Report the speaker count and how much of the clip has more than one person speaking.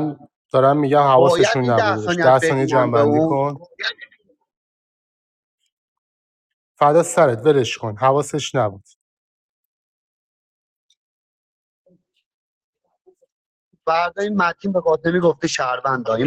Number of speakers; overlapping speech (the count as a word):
two, about 14%